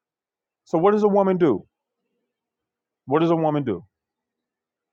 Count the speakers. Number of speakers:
one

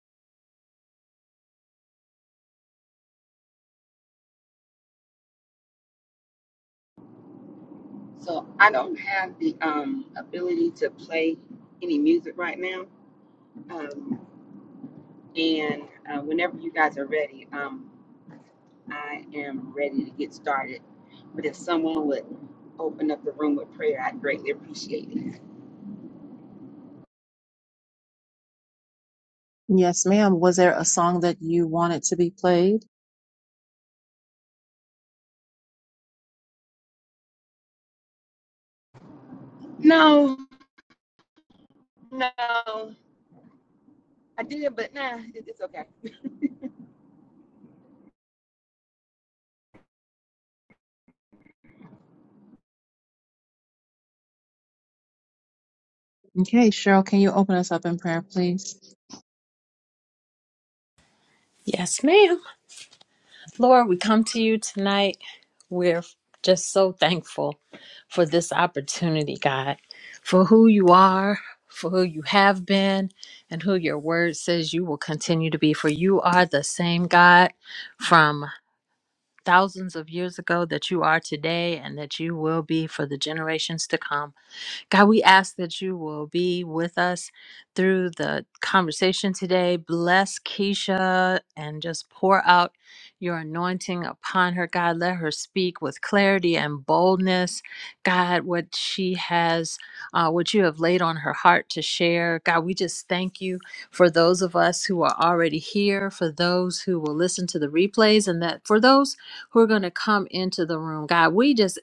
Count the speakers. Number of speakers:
three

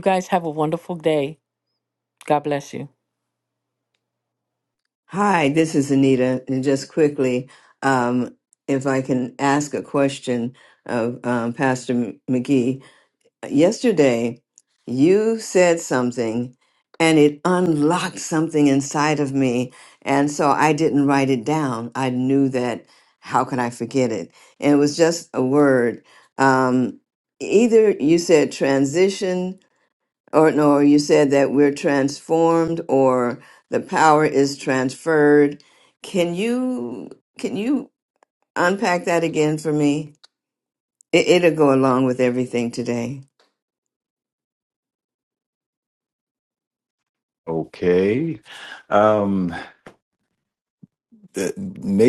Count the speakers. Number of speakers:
three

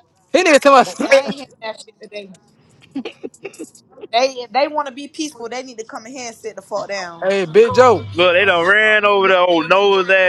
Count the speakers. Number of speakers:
three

